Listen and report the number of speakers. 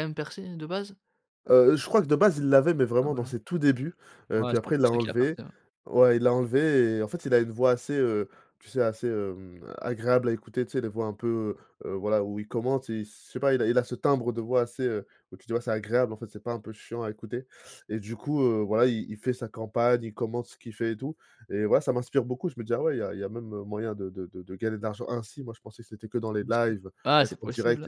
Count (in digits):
2